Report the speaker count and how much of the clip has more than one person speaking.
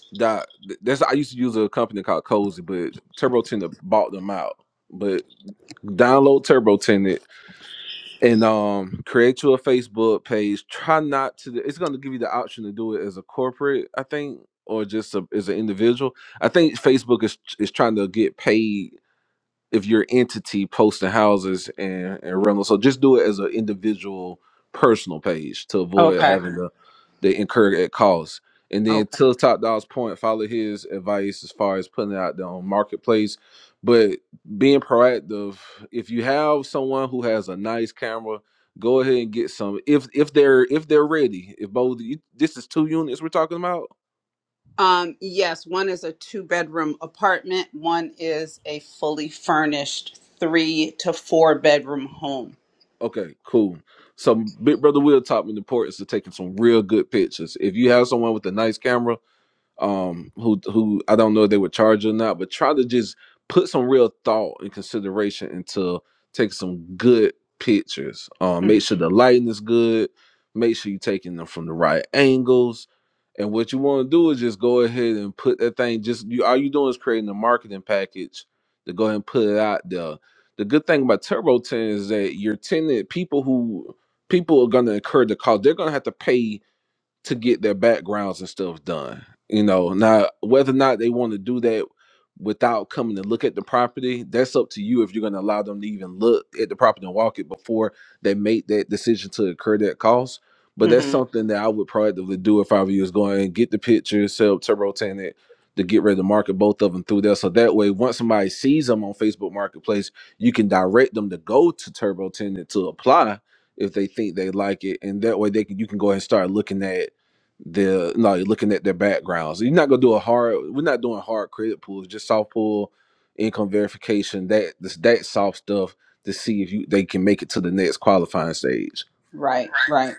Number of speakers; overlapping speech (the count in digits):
2, about 1%